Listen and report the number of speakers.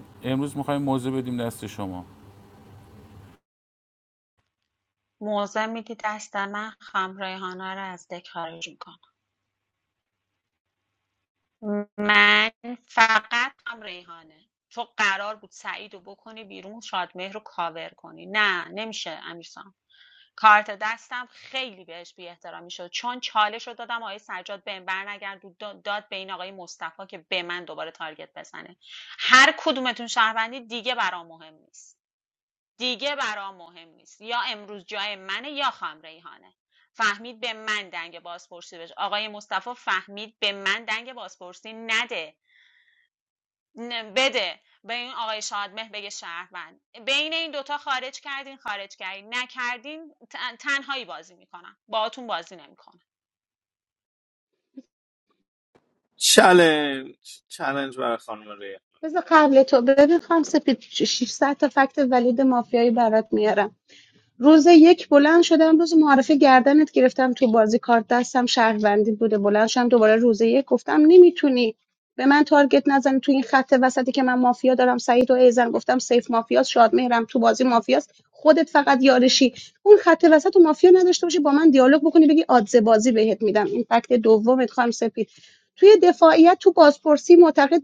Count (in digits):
4